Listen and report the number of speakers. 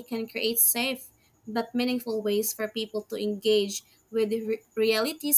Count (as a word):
one